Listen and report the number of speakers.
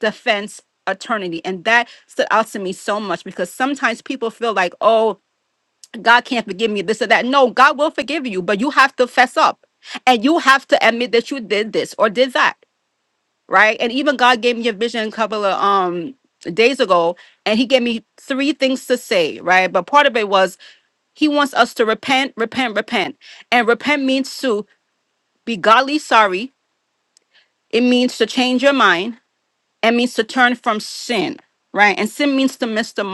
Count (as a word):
one